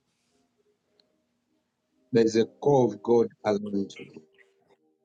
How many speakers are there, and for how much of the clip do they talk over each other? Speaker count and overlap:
1, no overlap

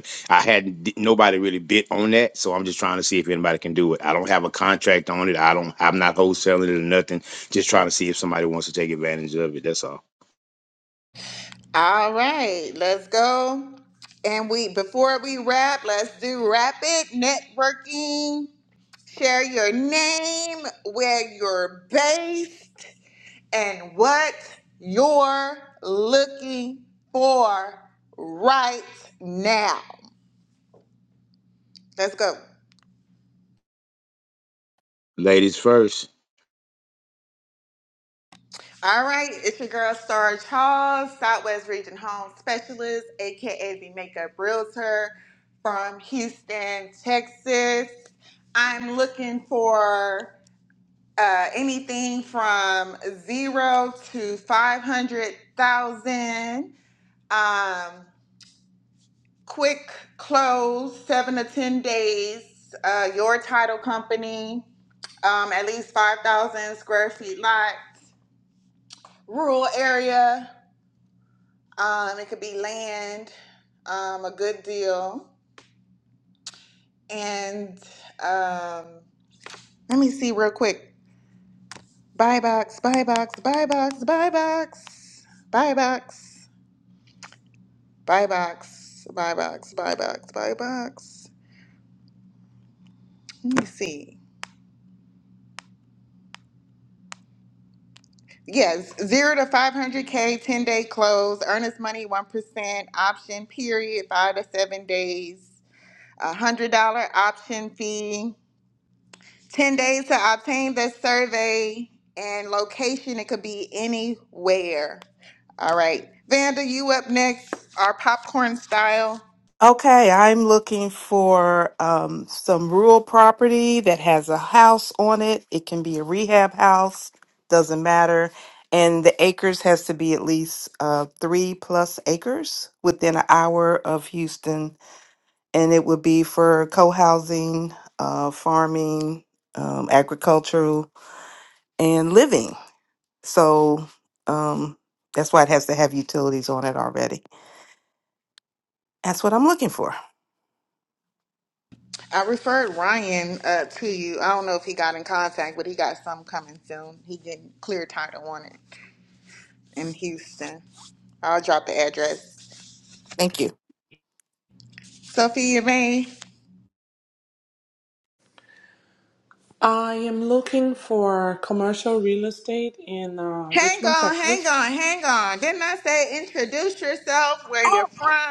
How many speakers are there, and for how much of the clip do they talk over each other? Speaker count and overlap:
4, about 1%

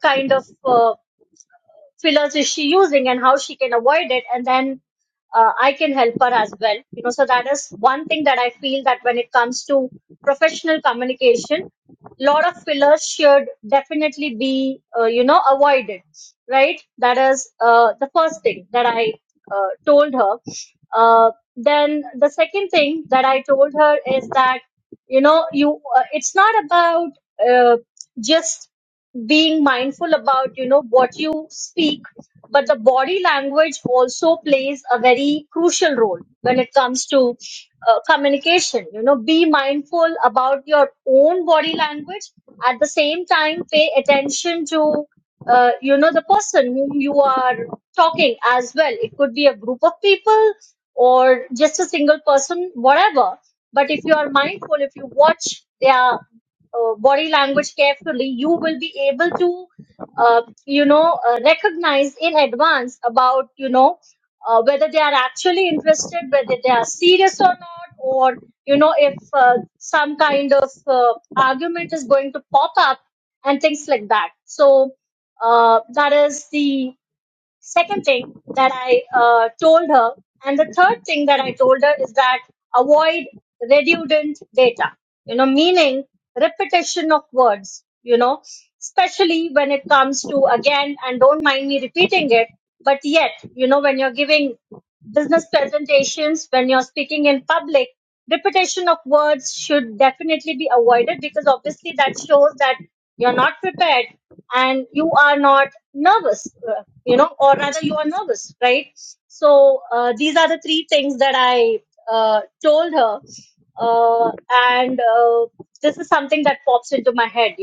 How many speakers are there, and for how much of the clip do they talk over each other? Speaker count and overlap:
1, no overlap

